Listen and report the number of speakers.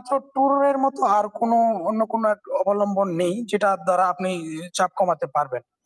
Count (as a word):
one